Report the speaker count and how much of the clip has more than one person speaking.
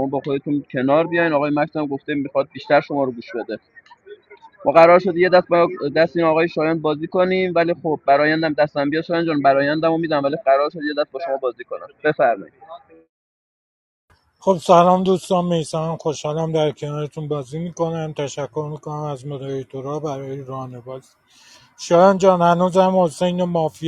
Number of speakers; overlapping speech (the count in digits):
2, no overlap